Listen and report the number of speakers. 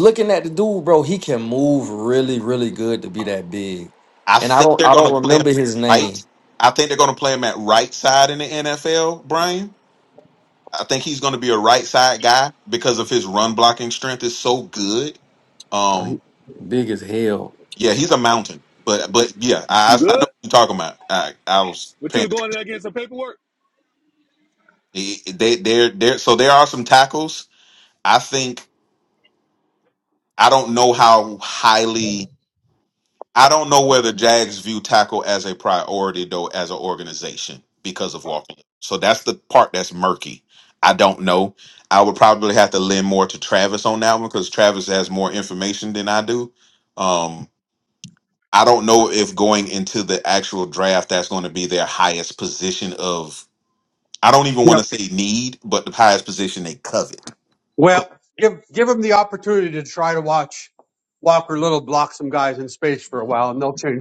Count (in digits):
4